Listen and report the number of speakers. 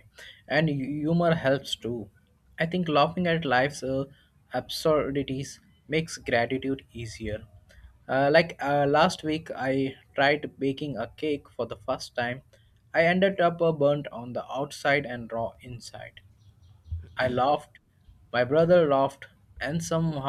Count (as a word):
one